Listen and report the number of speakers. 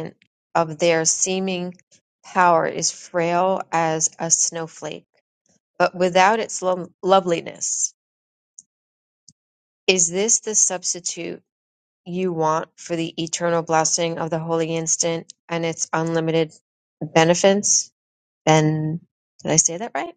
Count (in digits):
1